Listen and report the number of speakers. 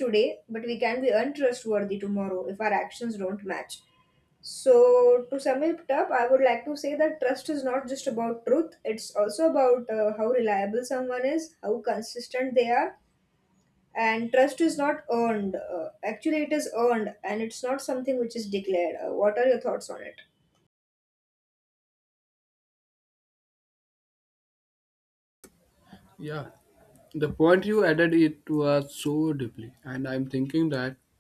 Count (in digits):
2